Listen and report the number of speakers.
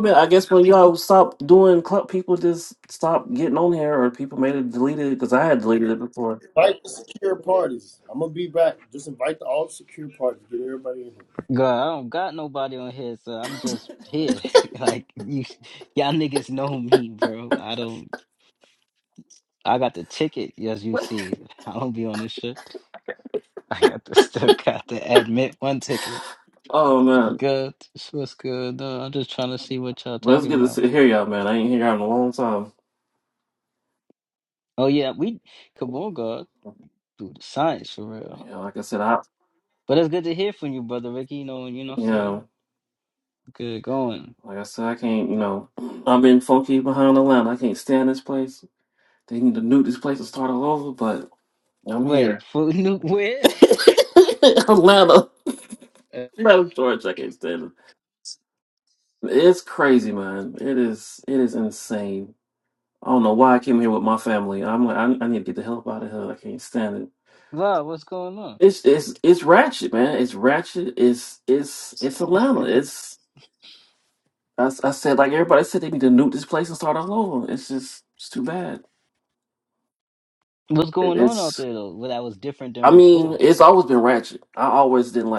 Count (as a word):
three